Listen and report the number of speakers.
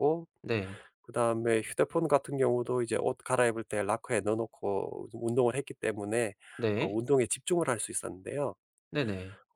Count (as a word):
two